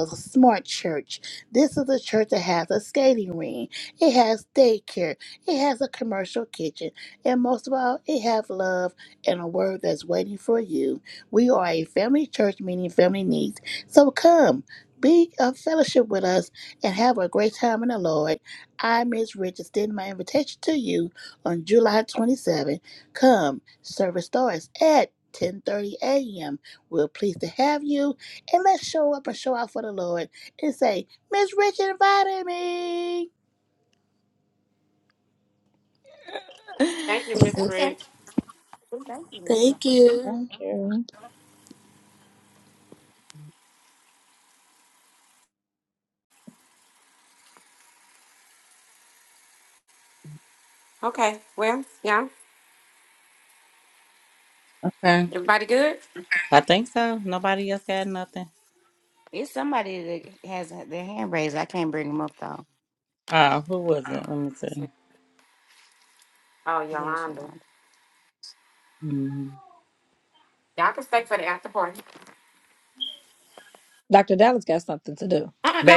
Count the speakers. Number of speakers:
5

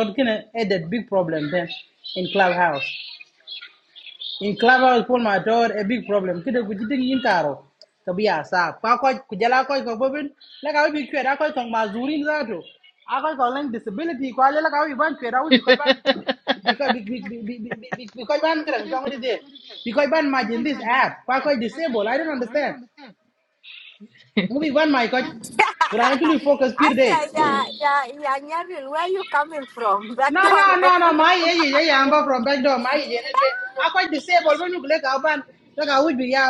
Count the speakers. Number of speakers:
2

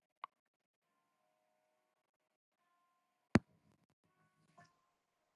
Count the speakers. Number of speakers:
0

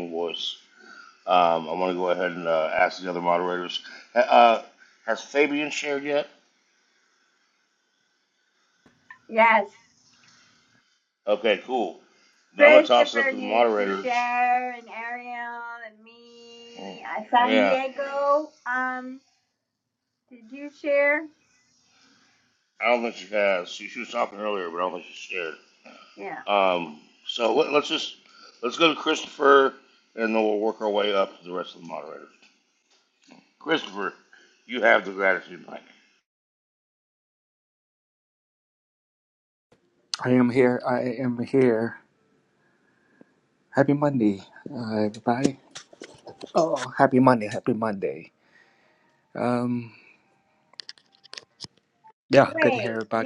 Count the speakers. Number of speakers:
3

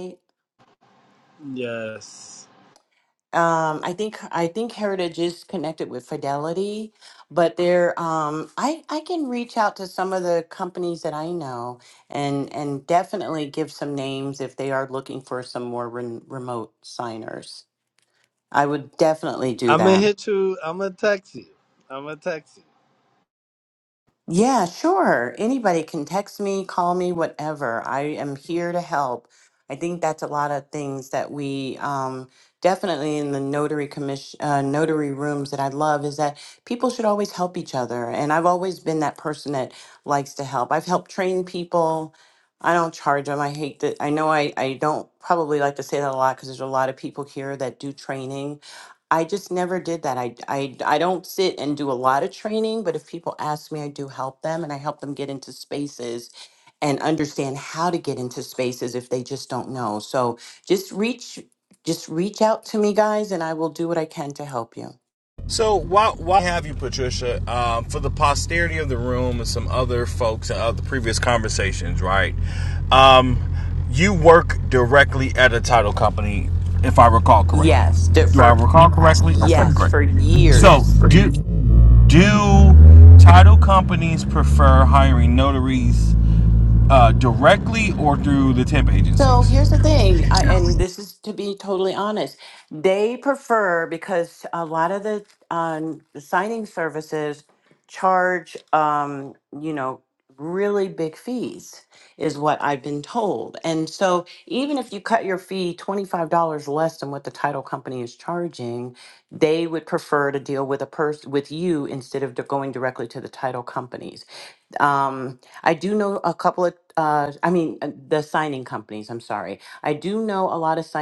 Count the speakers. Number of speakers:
3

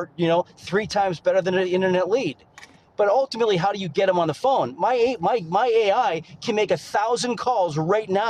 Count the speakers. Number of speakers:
1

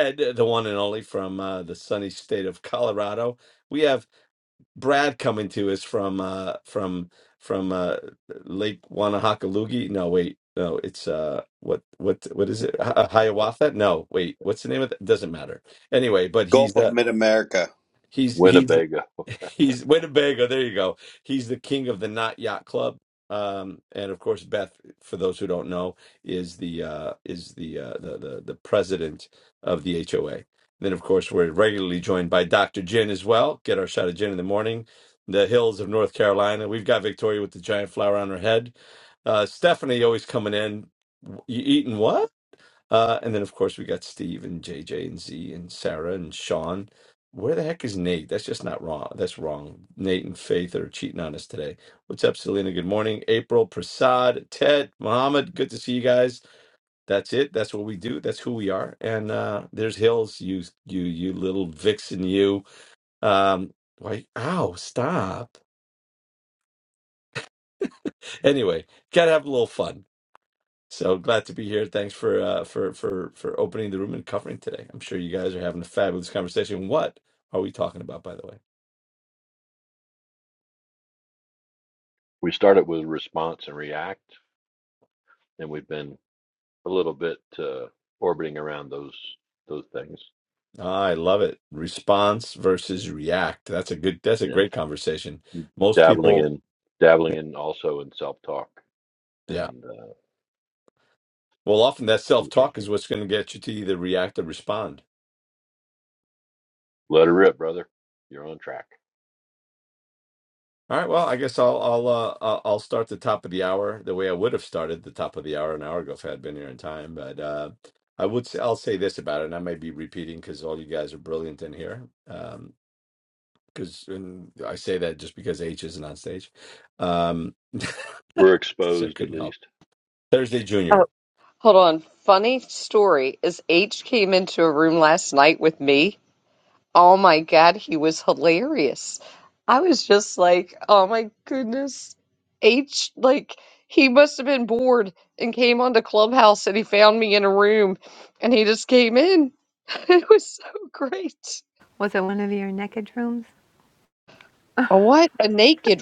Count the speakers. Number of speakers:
5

